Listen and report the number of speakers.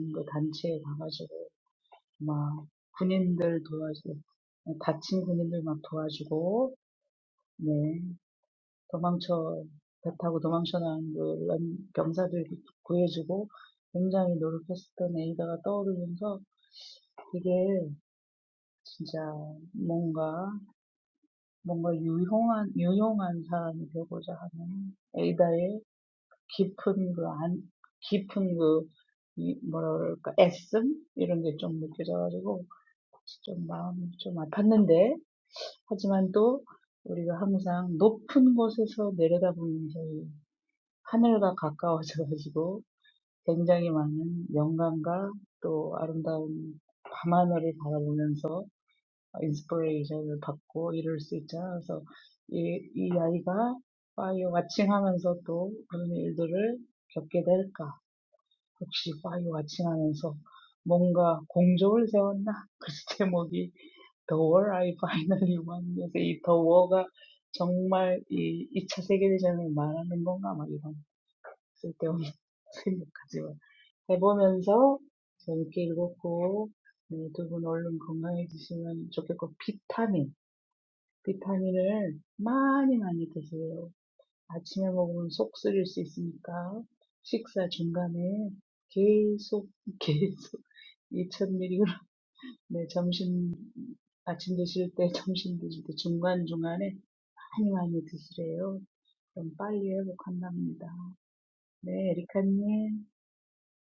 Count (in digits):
1